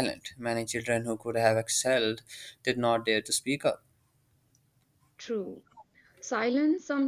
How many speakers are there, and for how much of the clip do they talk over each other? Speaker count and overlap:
2, no overlap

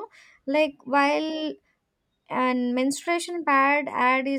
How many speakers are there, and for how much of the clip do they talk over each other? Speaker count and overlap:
1, no overlap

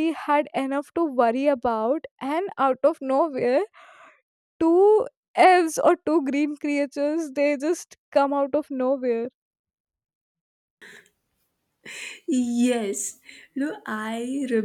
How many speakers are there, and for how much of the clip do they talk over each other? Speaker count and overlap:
2, no overlap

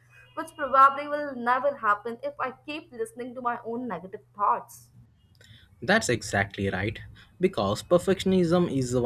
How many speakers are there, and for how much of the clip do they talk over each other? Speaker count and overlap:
2, no overlap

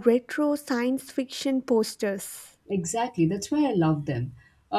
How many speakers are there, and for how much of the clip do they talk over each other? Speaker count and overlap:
2, no overlap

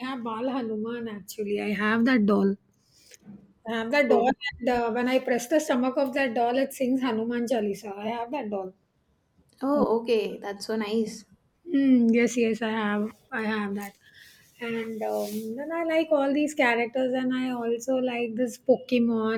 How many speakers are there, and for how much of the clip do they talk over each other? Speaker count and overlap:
2, about 1%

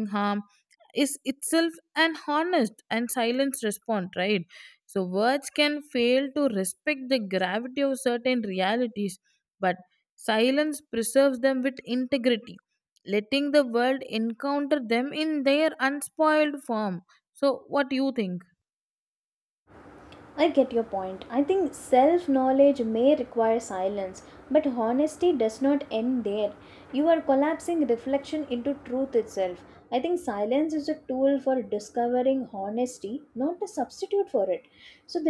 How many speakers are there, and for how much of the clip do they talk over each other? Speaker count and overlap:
2, no overlap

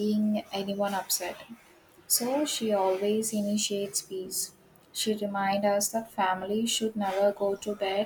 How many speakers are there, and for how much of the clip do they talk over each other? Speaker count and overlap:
1, no overlap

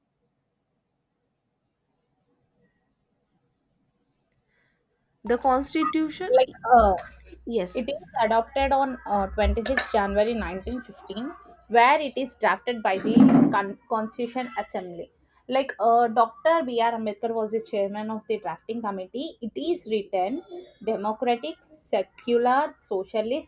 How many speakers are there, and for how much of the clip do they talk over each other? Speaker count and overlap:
2, under 1%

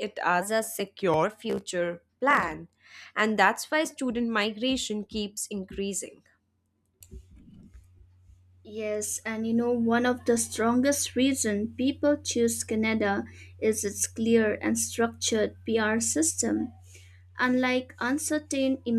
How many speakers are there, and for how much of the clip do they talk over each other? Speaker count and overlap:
2, no overlap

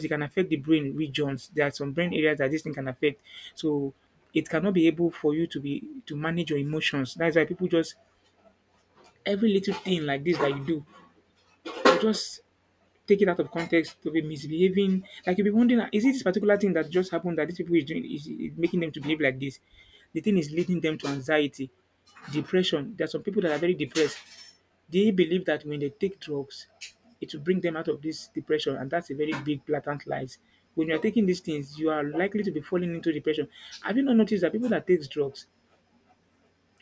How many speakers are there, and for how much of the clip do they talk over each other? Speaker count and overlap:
1, no overlap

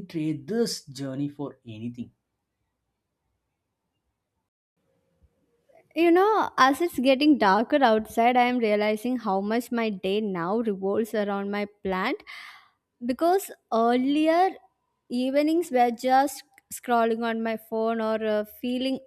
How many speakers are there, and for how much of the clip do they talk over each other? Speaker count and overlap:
2, no overlap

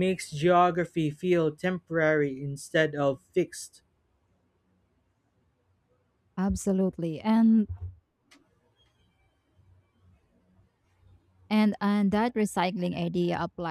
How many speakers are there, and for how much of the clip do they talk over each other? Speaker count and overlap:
2, no overlap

